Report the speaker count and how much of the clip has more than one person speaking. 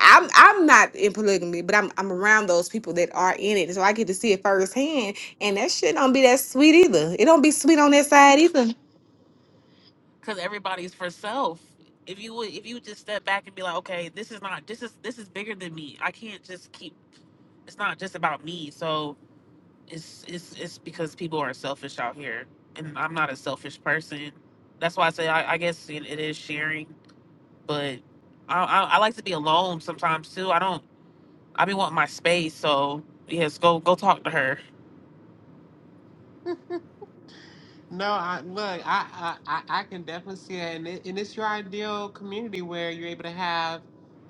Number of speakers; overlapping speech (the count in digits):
3, no overlap